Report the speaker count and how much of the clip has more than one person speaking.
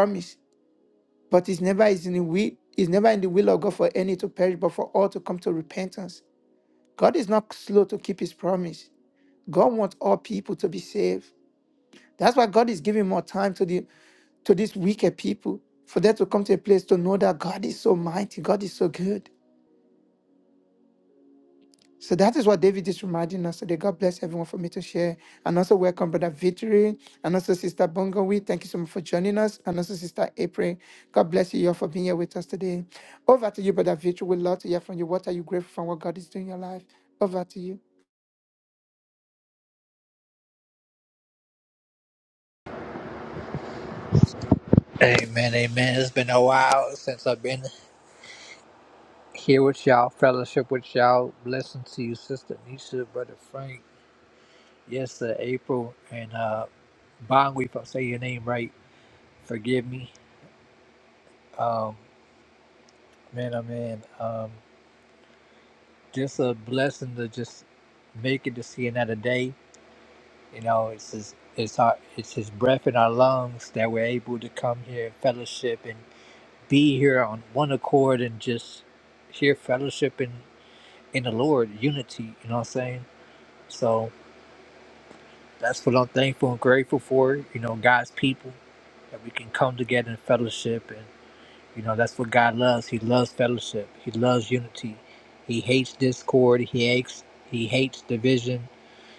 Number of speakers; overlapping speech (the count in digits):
2, no overlap